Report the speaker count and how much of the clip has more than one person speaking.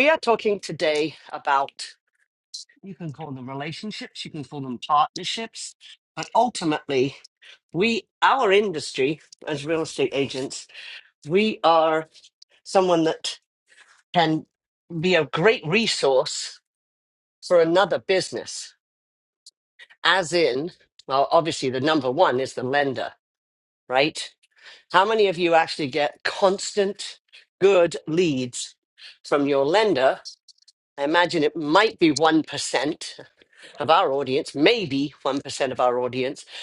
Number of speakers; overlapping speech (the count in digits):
1, no overlap